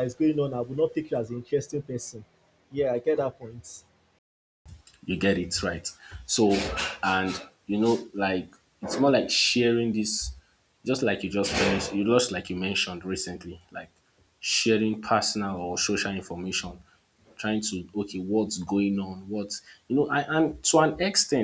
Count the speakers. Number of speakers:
2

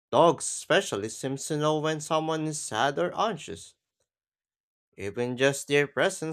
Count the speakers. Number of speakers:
1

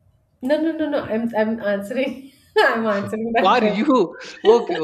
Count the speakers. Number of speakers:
2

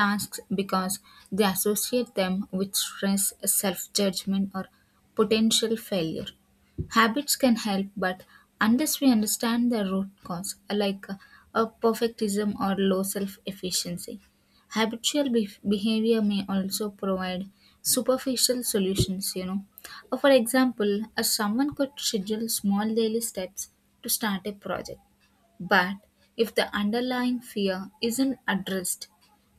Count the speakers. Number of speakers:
1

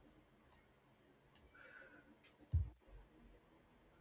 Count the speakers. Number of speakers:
0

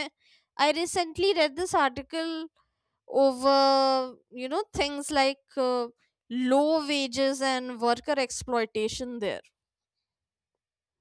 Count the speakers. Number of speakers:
1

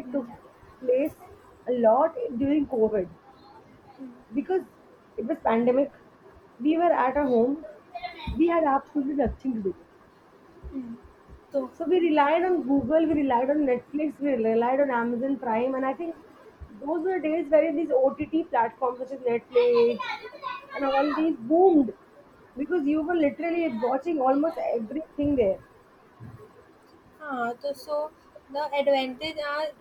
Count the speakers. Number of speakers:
2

